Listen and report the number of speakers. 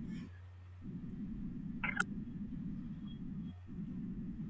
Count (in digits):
0